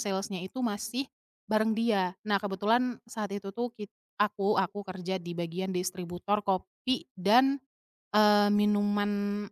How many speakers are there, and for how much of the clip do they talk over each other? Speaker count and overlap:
1, no overlap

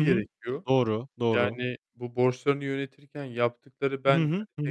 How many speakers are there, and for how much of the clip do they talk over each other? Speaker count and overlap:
2, about 24%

